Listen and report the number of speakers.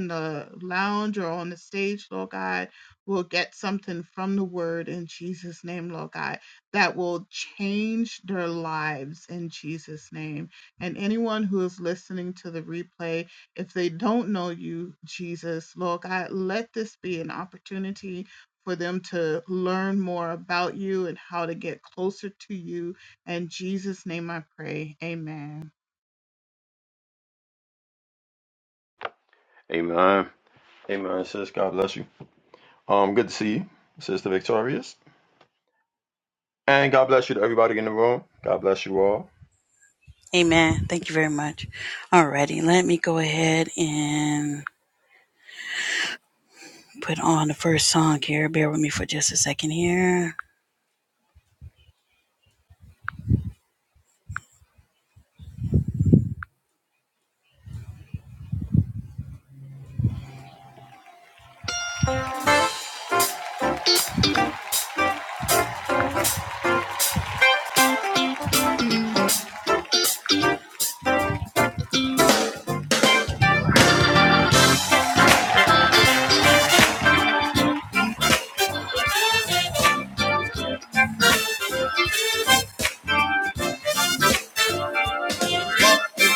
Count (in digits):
3